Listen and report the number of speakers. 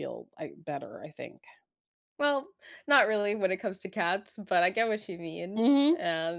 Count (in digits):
2